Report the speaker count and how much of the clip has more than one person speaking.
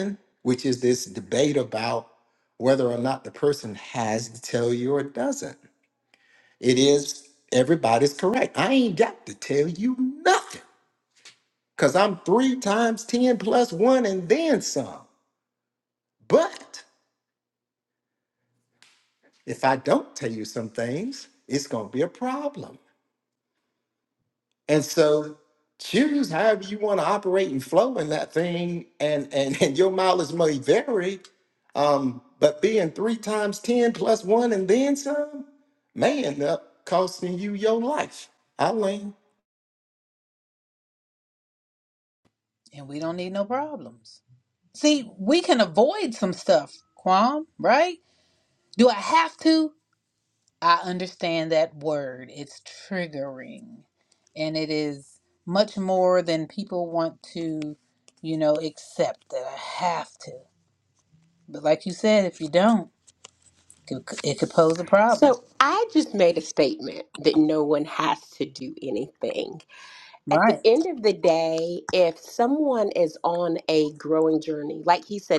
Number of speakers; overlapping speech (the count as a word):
three, about 1%